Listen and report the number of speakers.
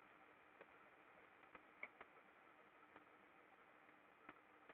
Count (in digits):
0